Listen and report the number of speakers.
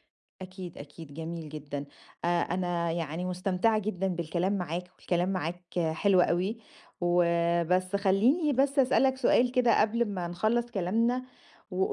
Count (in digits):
1